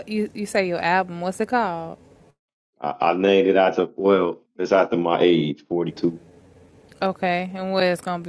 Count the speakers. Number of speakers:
2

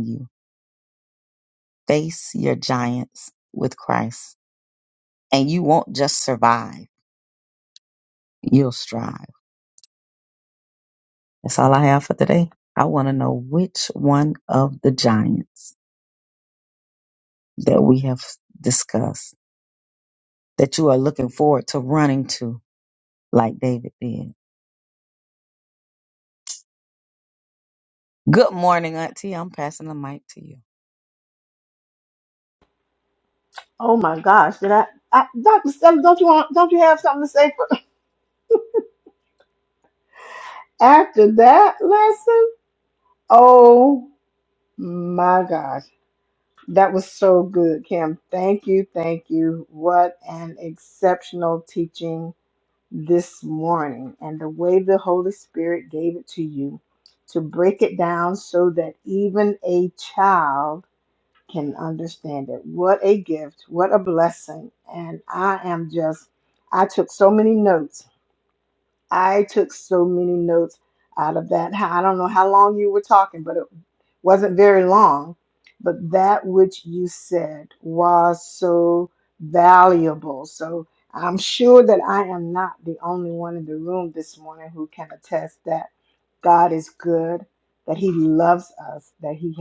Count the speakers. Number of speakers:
2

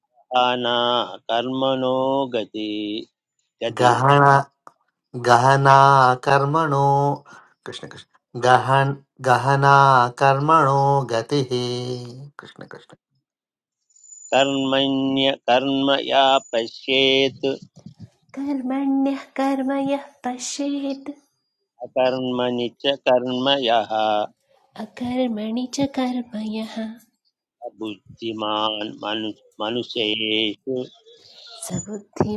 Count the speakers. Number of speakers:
3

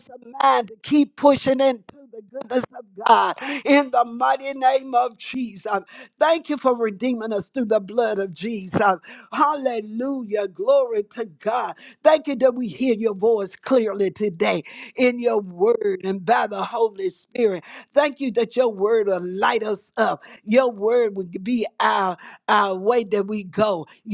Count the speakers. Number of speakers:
1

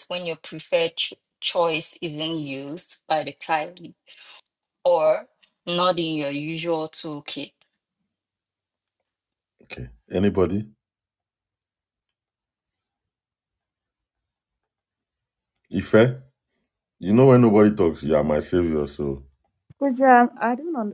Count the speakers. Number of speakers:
3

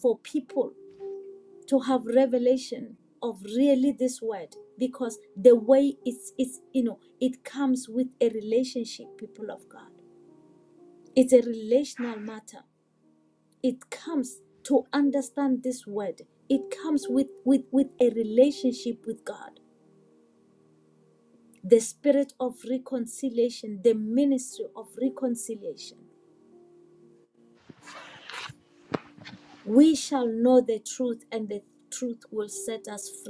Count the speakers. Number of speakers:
1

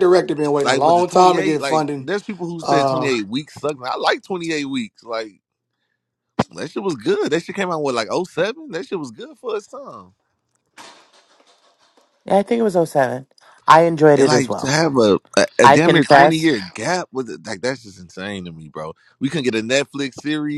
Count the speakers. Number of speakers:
3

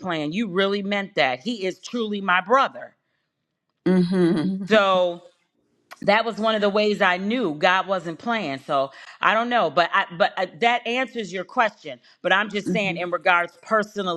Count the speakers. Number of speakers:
2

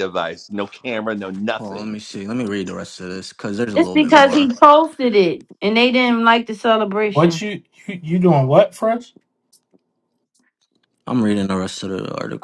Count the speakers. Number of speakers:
4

